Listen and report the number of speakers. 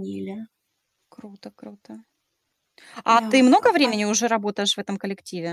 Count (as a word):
two